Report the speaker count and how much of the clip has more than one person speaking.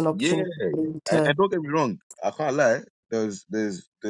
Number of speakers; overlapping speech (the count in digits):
2, about 15%